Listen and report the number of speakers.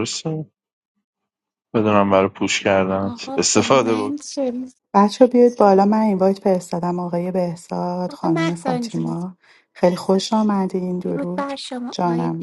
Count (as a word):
three